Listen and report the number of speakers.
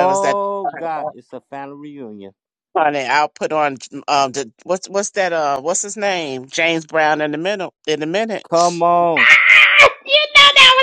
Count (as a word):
three